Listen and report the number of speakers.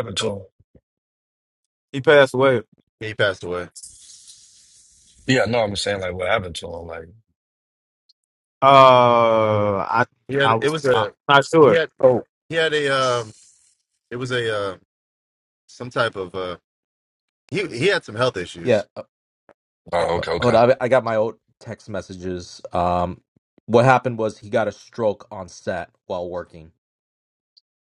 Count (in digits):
4